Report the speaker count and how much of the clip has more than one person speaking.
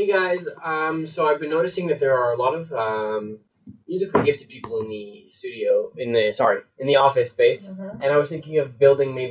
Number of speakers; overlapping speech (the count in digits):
1, no overlap